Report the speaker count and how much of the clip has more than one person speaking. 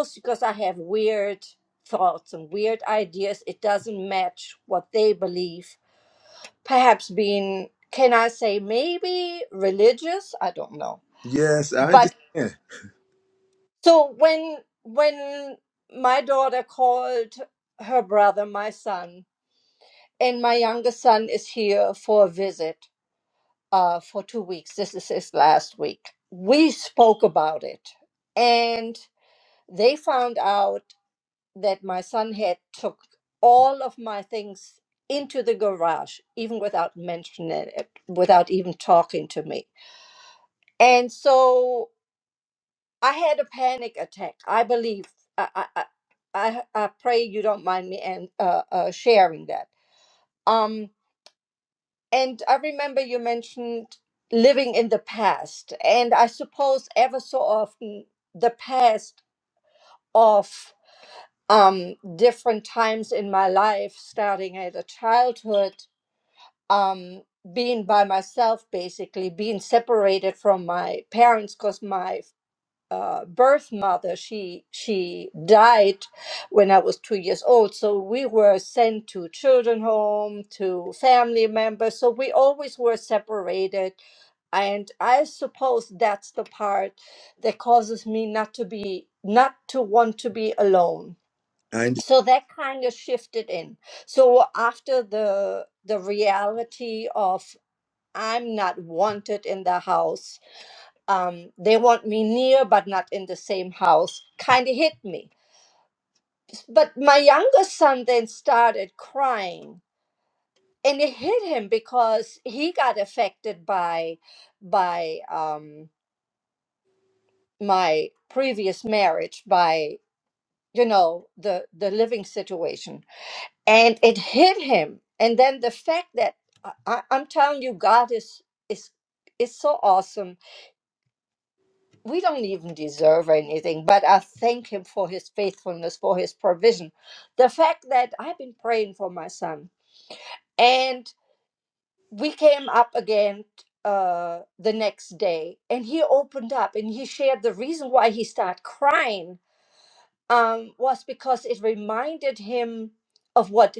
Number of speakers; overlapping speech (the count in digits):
2, under 1%